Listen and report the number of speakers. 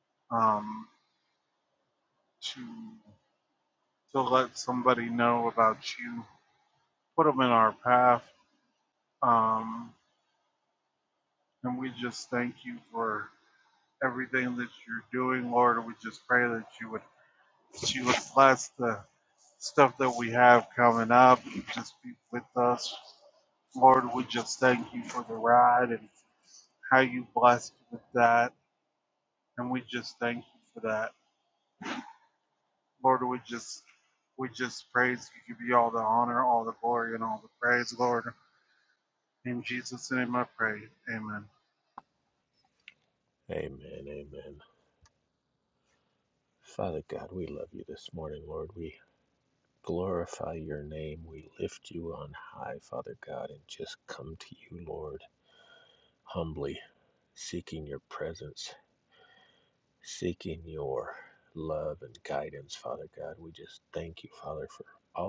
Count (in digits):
2